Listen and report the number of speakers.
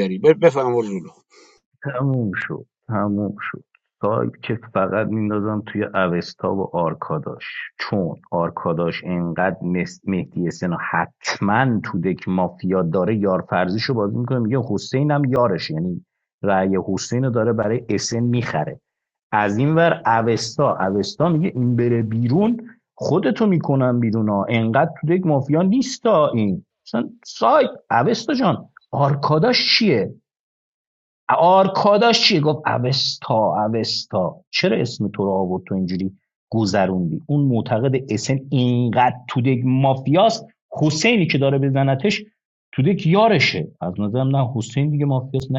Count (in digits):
2